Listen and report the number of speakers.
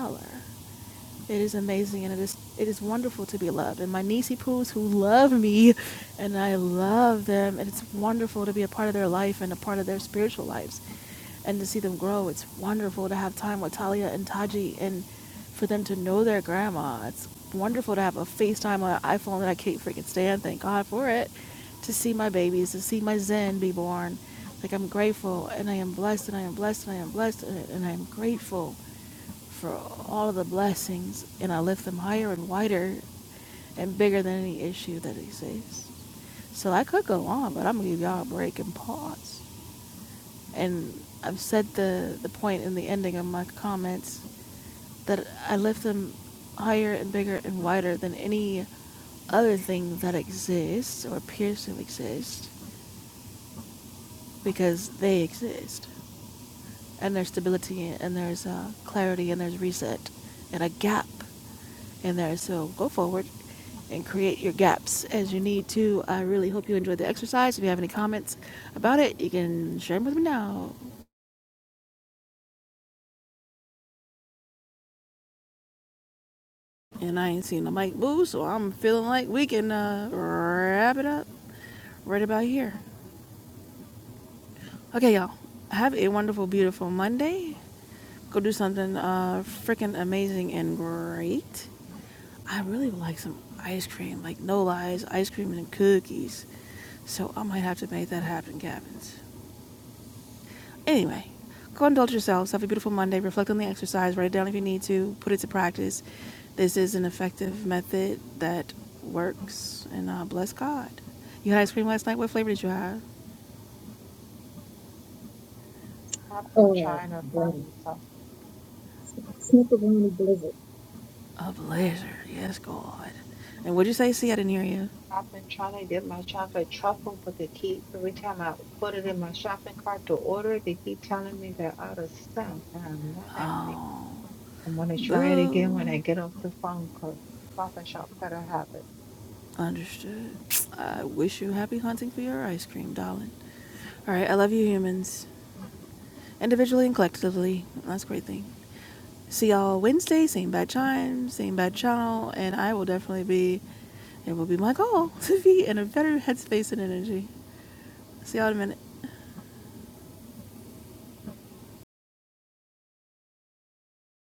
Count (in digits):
3